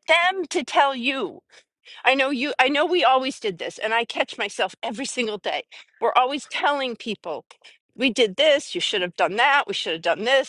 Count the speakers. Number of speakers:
1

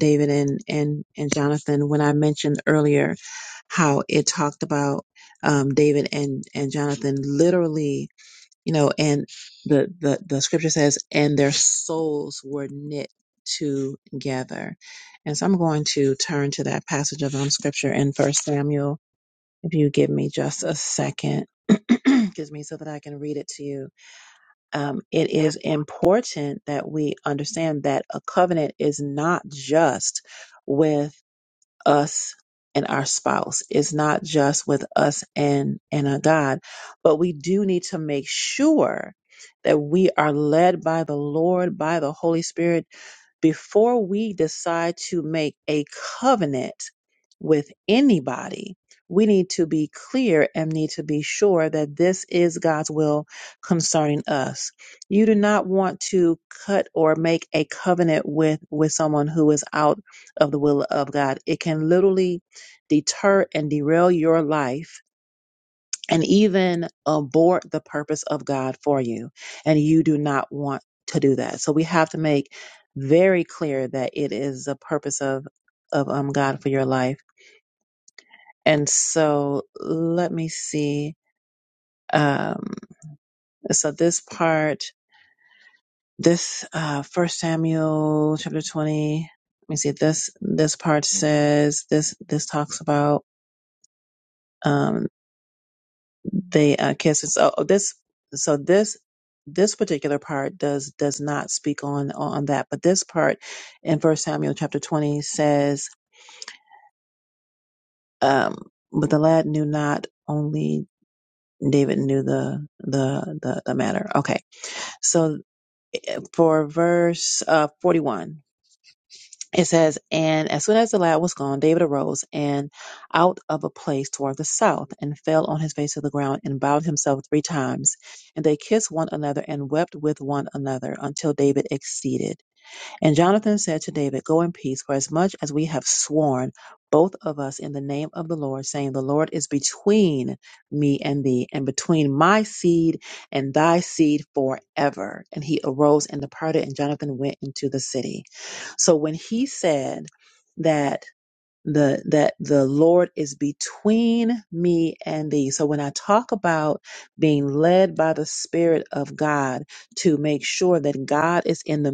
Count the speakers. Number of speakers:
1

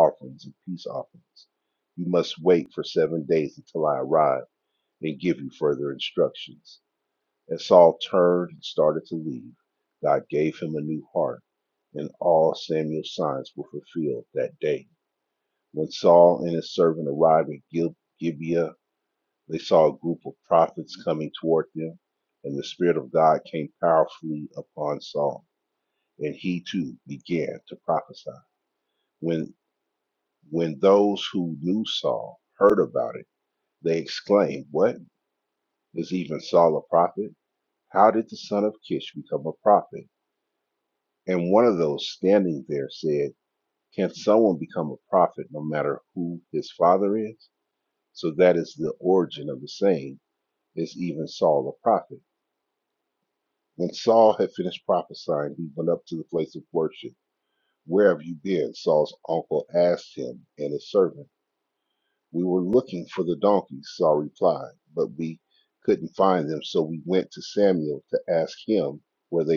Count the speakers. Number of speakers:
1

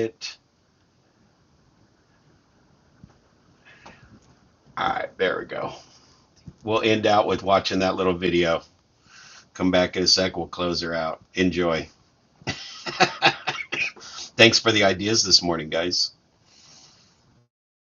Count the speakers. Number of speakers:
1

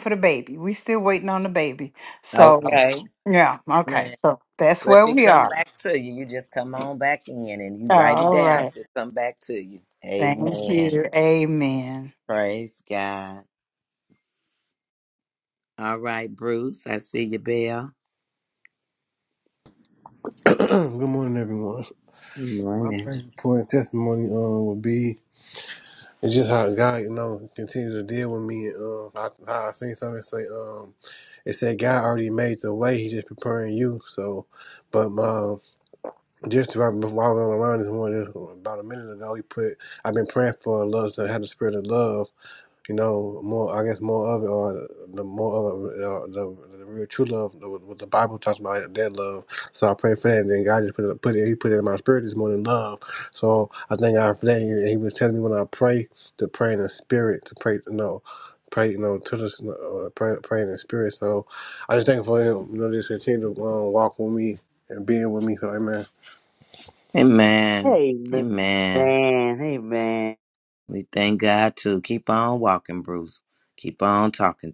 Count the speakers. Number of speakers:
4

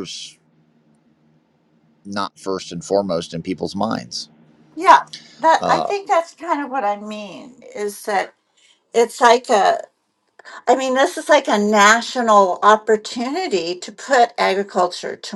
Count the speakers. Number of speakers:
2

